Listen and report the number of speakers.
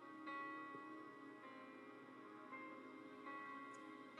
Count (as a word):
zero